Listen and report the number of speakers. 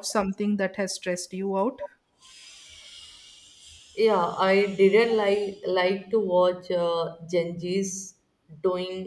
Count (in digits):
2